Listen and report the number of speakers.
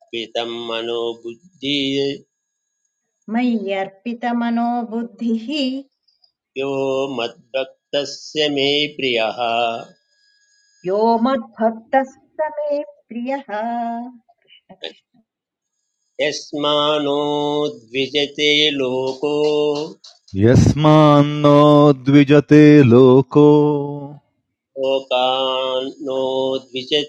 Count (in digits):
3